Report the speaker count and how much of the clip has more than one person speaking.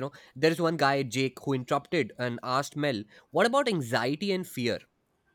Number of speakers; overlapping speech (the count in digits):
1, no overlap